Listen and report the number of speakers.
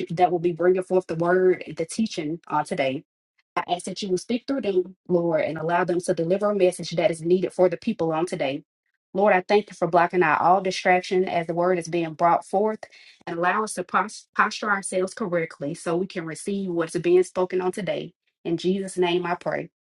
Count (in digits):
1